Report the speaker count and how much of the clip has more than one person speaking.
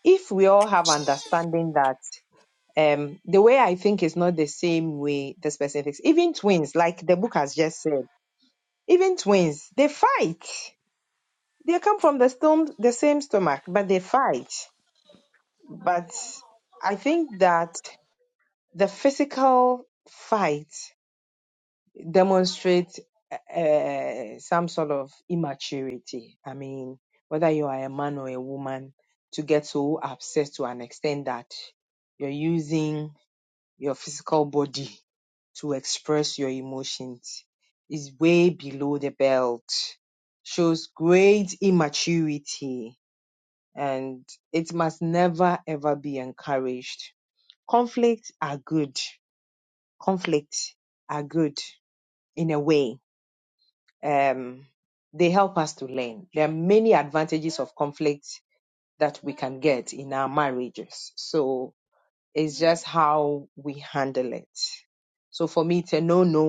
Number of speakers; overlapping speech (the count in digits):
1, no overlap